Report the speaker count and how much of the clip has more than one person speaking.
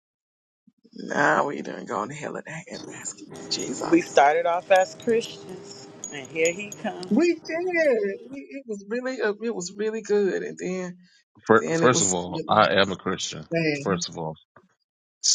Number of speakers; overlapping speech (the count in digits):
3, about 8%